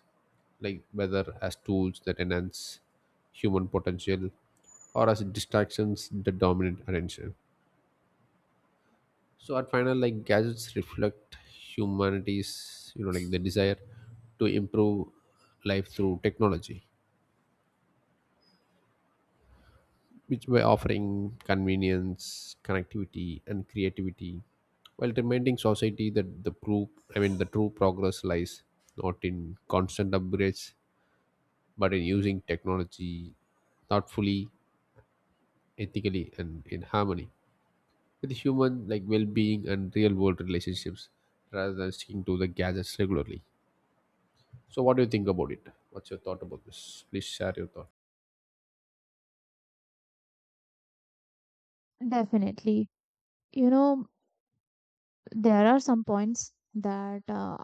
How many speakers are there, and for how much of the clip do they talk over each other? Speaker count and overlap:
2, no overlap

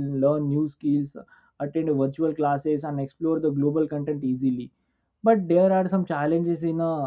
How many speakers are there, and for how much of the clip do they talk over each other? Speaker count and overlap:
1, no overlap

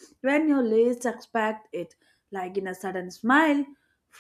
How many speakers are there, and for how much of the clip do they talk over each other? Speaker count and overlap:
1, no overlap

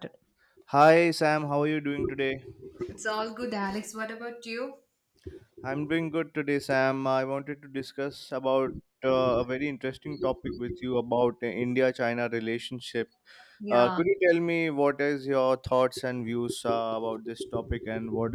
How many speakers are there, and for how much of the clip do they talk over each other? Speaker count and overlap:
2, about 2%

